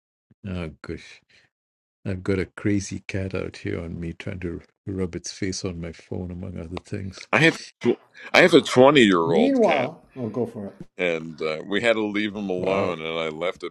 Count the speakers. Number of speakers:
three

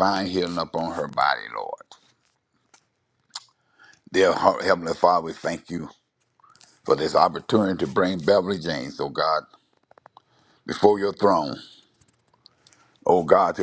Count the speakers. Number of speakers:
one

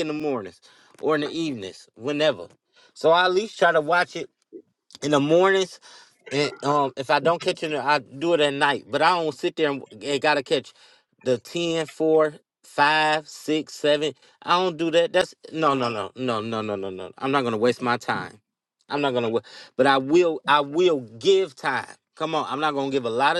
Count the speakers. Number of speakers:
one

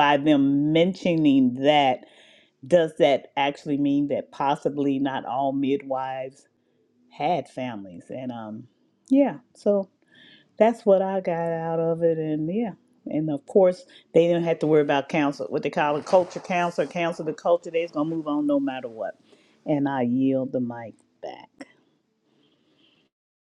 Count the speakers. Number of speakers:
one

